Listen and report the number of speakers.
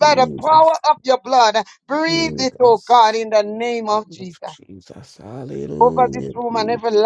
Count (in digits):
2